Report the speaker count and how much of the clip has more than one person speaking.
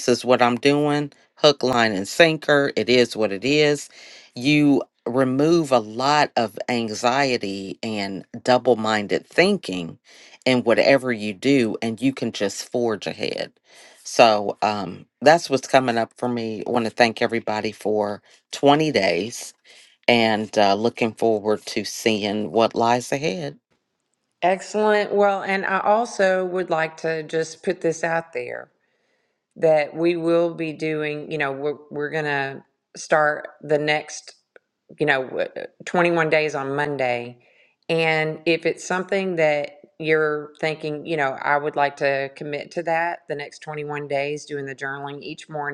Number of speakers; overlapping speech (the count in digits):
2, no overlap